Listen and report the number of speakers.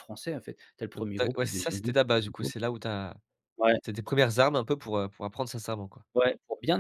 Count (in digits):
2